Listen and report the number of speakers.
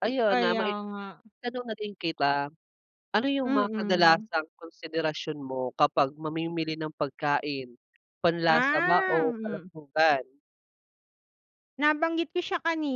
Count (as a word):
two